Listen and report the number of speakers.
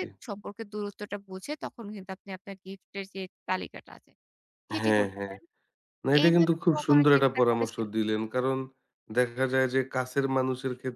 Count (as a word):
two